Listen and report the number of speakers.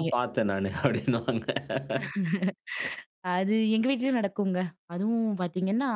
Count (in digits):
2